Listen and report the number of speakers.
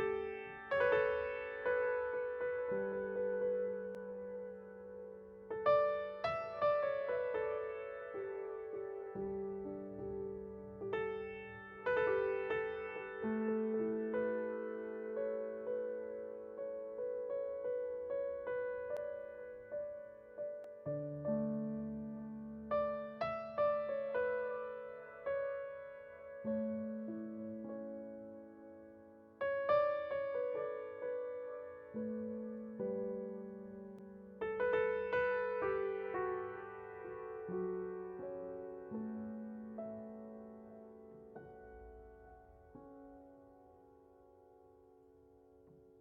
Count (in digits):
0